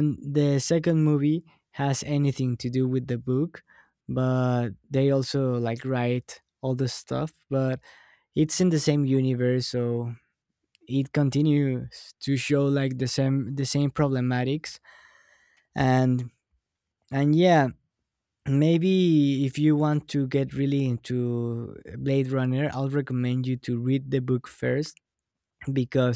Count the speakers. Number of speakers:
1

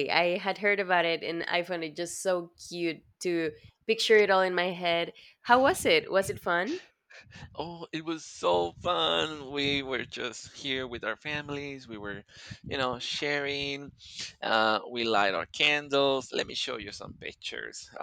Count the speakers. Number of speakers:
2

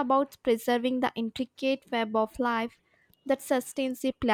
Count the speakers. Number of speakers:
1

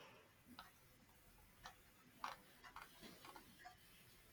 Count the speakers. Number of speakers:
0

